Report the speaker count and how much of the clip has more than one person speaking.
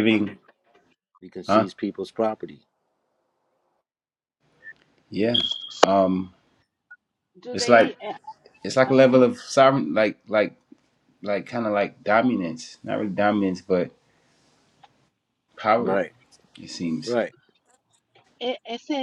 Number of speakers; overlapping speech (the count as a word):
three, about 6%